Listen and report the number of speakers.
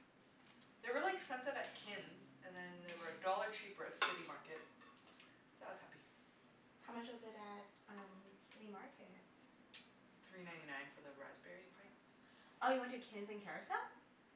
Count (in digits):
2